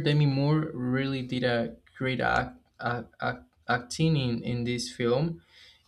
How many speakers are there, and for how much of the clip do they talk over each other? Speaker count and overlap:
one, no overlap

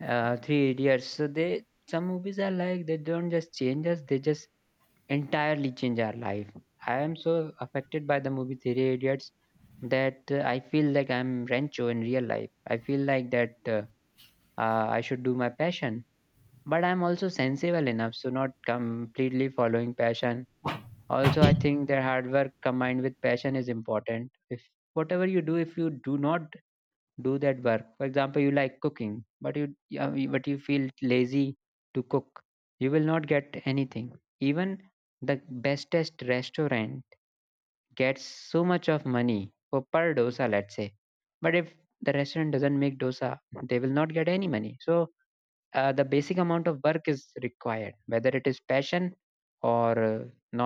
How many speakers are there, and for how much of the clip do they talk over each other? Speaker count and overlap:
one, no overlap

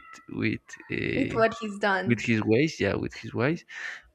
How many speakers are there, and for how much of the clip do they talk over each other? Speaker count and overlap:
two, about 11%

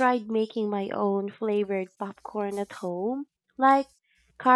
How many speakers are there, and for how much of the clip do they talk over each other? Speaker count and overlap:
one, no overlap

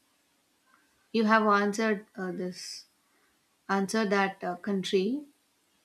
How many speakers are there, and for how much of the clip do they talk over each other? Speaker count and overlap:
one, no overlap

